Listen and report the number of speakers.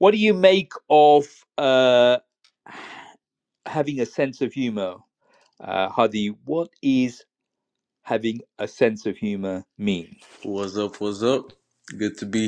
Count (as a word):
two